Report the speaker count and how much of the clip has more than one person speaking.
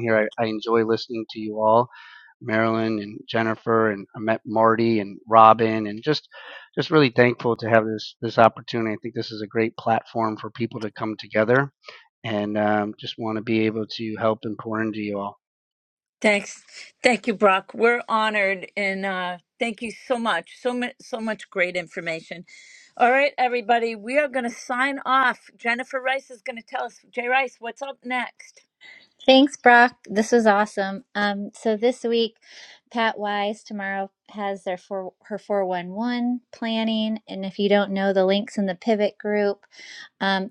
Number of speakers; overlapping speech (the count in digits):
3, no overlap